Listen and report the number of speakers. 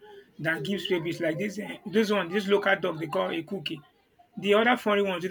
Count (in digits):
1